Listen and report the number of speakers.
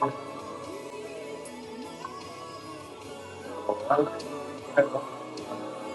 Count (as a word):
zero